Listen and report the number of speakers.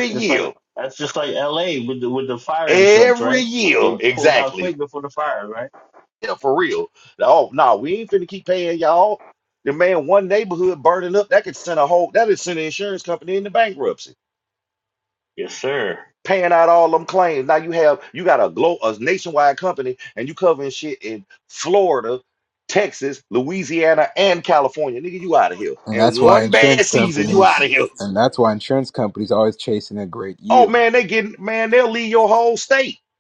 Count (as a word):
three